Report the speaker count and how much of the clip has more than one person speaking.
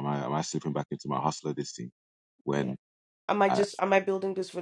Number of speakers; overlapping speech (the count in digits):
2, about 7%